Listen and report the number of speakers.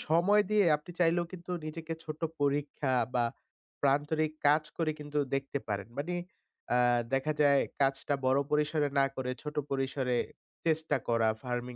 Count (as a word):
one